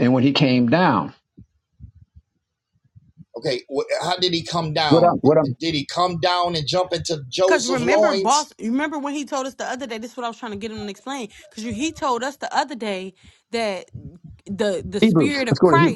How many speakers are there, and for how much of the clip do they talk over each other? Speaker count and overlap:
three, about 13%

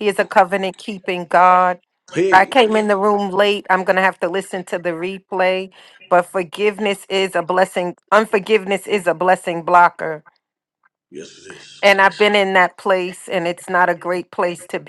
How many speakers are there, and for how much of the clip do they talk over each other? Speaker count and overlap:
two, about 2%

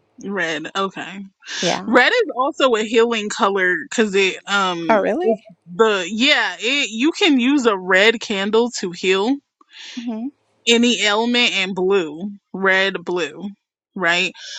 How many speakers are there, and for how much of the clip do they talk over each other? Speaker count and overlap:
two, about 2%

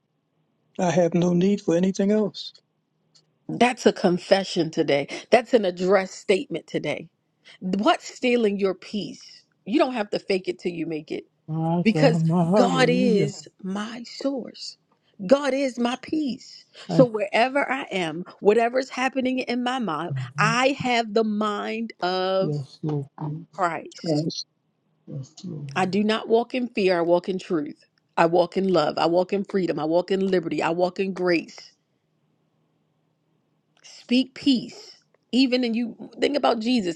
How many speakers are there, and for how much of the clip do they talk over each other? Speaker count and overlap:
three, about 4%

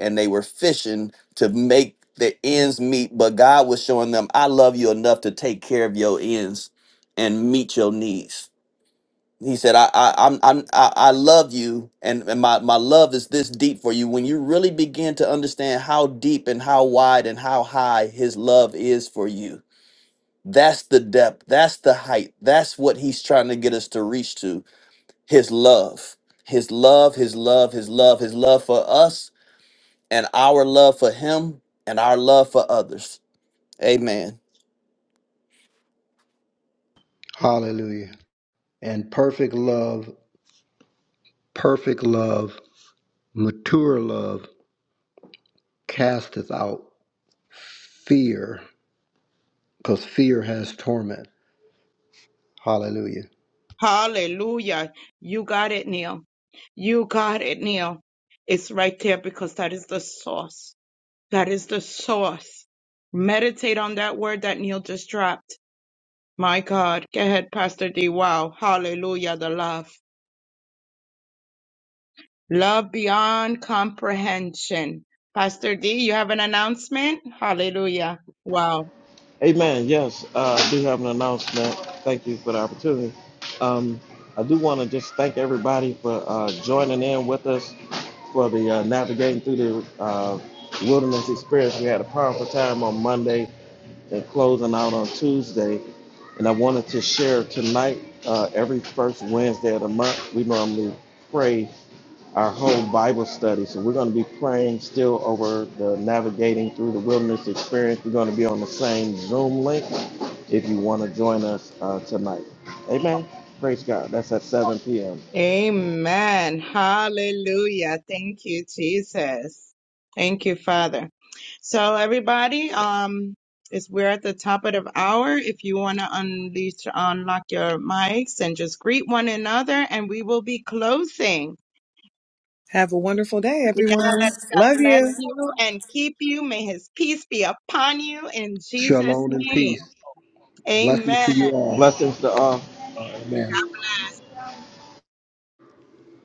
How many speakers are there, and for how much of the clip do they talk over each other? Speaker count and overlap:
five, about 2%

